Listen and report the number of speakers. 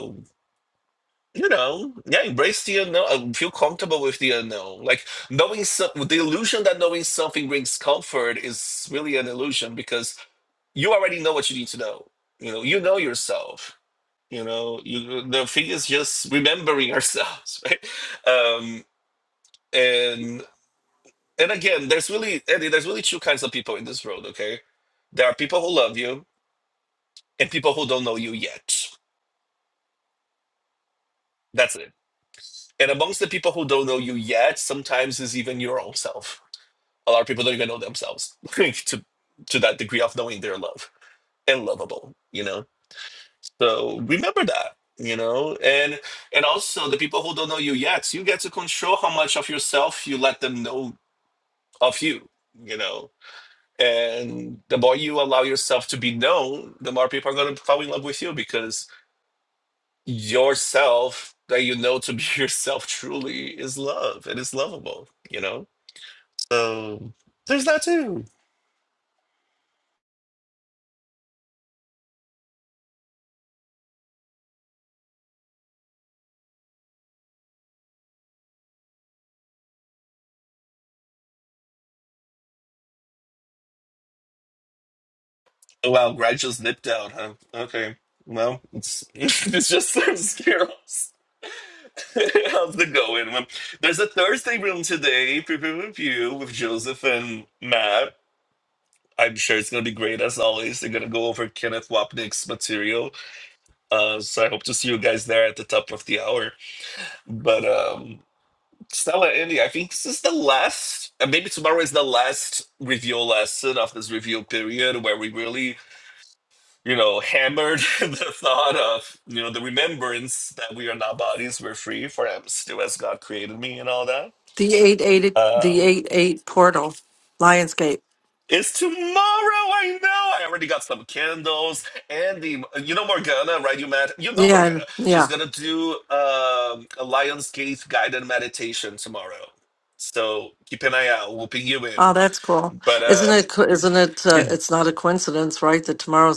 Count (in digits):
2